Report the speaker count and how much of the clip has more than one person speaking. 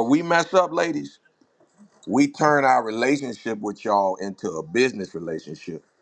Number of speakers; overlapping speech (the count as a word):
one, no overlap